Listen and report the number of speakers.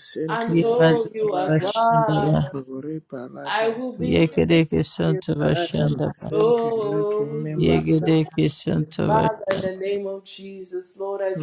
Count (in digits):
3